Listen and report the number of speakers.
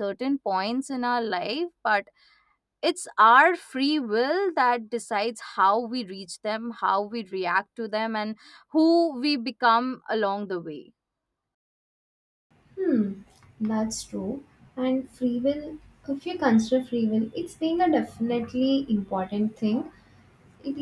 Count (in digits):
2